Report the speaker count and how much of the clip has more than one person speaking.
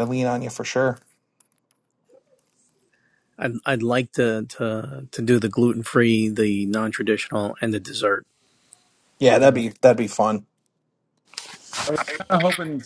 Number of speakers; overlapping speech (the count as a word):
three, about 2%